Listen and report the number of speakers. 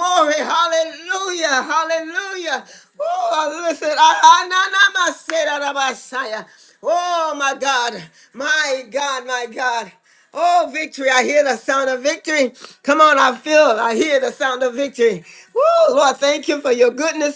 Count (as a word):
one